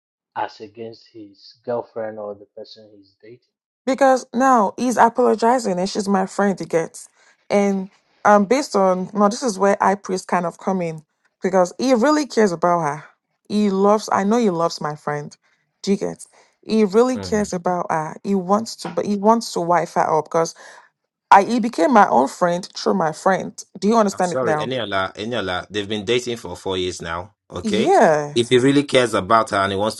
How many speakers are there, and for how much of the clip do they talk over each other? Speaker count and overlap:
3, about 3%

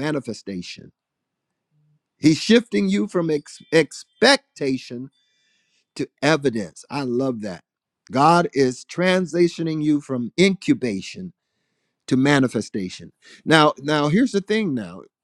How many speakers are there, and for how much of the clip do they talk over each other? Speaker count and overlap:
1, no overlap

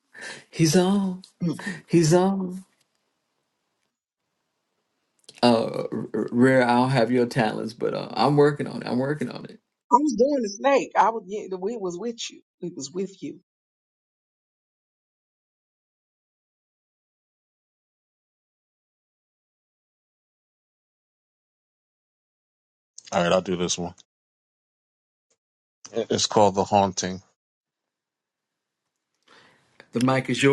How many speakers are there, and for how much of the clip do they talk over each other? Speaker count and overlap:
3, no overlap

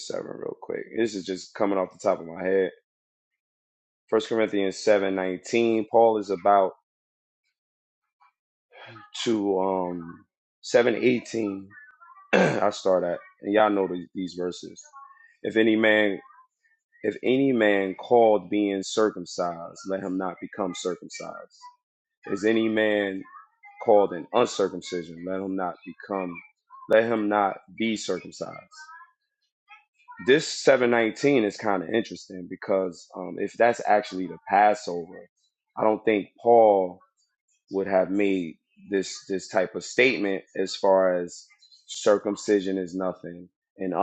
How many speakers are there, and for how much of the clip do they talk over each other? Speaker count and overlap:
1, no overlap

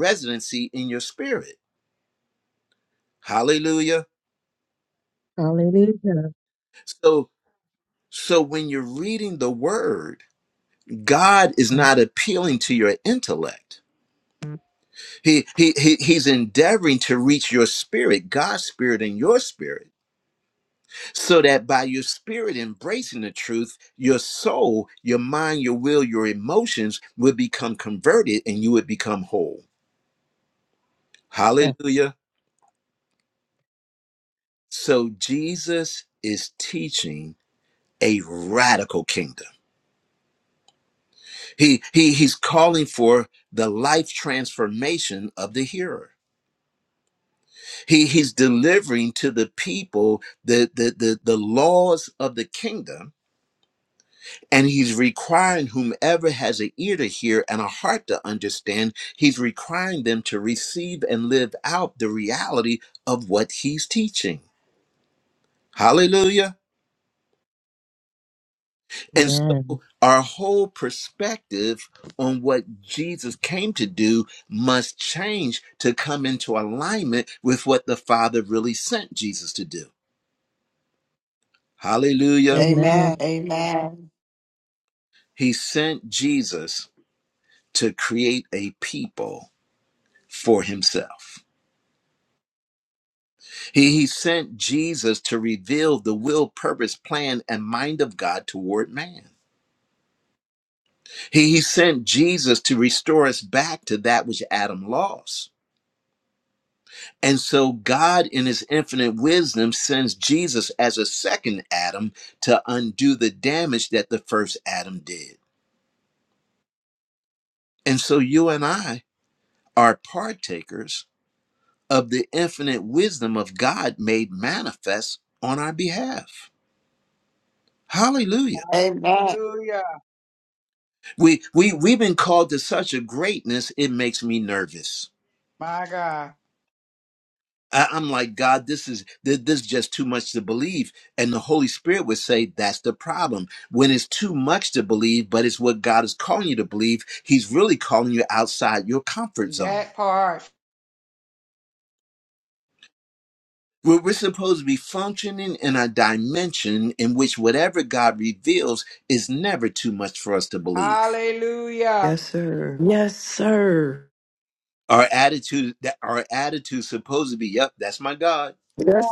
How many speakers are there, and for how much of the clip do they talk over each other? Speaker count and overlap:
5, about 2%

